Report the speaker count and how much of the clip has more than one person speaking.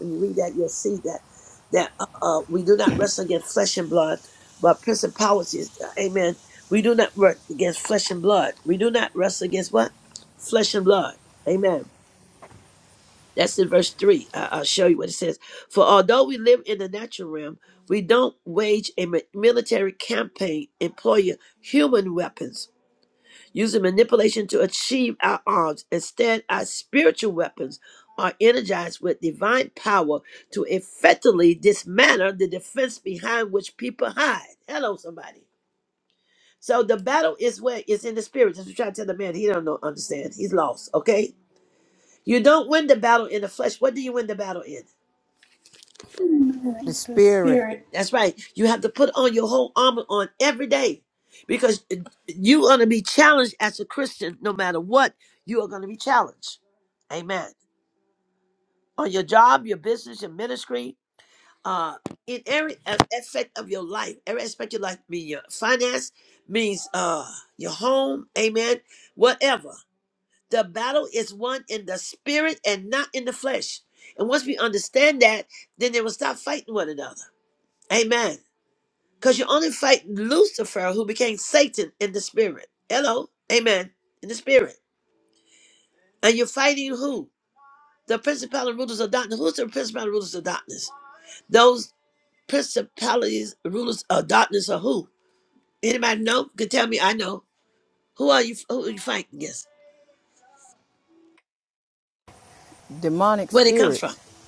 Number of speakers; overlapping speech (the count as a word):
three, about 1%